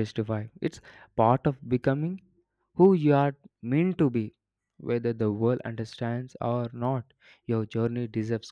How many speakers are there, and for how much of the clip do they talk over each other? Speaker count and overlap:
1, no overlap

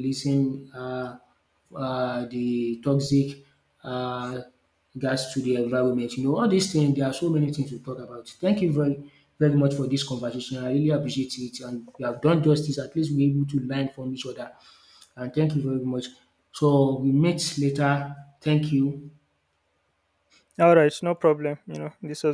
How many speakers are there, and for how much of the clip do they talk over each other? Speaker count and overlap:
2, no overlap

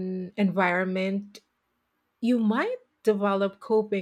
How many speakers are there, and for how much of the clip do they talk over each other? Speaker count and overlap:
1, no overlap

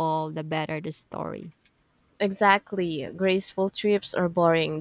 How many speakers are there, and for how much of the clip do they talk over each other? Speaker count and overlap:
2, no overlap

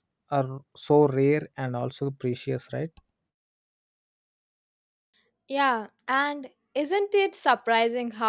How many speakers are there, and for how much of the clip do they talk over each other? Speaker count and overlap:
2, no overlap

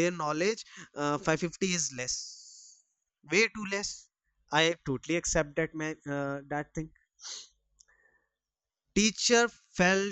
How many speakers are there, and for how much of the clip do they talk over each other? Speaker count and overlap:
1, no overlap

